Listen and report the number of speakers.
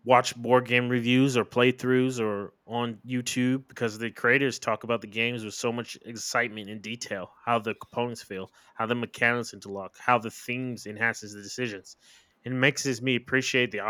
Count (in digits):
1